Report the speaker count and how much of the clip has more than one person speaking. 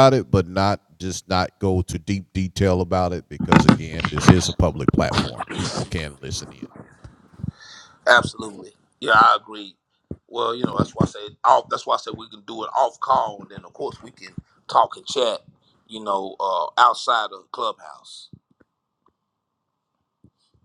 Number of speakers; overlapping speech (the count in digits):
2, no overlap